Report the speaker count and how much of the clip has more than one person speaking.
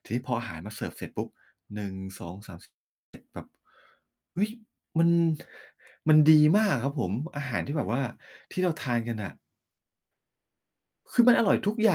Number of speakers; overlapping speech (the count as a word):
one, no overlap